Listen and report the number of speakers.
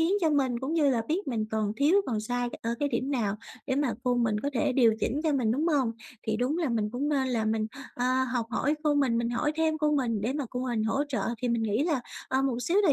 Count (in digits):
1